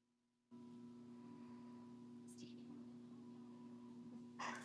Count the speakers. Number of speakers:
0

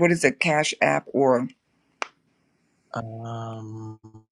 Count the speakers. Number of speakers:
2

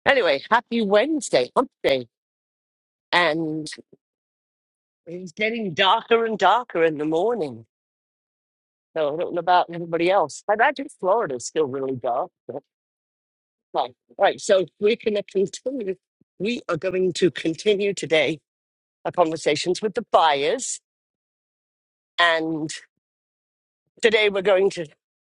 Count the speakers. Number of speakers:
1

